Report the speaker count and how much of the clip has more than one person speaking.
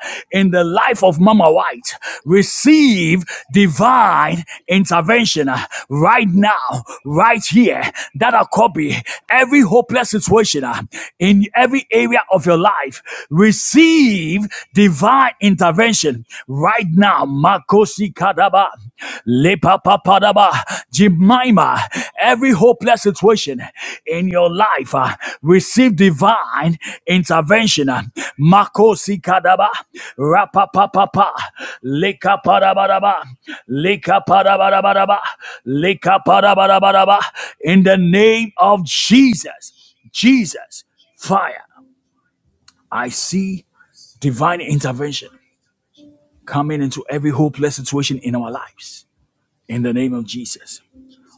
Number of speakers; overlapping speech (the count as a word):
one, no overlap